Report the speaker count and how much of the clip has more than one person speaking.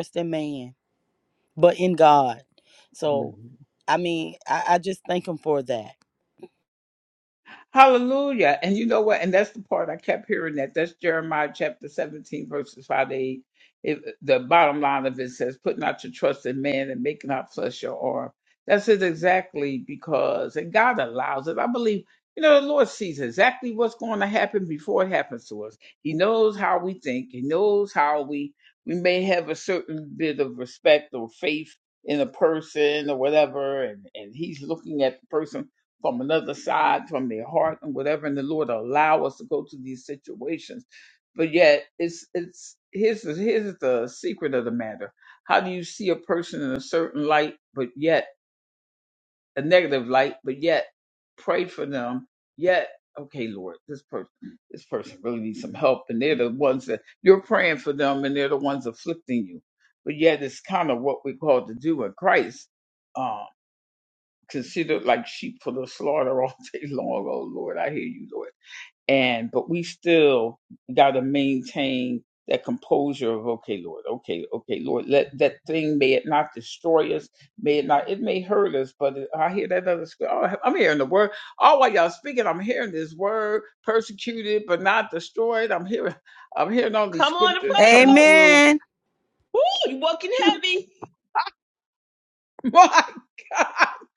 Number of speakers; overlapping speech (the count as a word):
three, about 2%